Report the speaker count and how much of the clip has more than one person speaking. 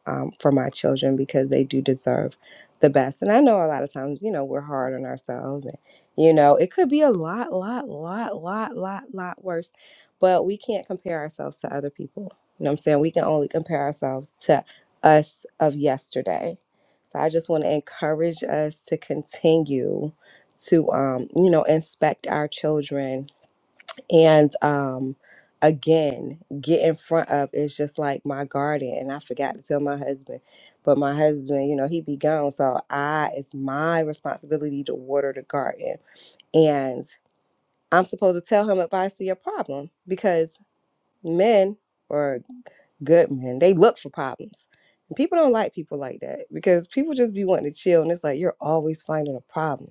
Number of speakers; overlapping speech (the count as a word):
one, no overlap